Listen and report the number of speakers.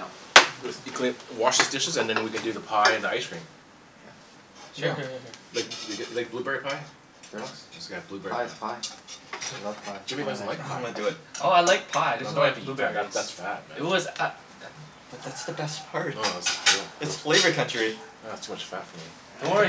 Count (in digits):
4